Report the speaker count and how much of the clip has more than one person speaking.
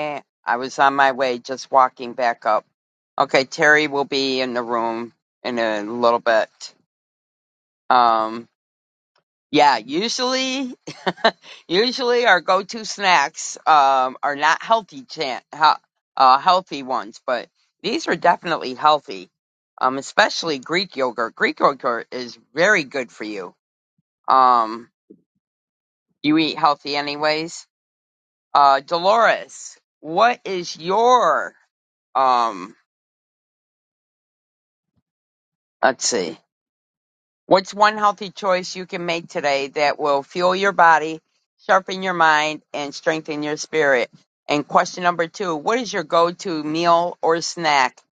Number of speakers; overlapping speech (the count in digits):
1, no overlap